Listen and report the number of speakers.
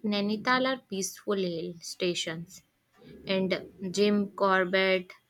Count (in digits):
1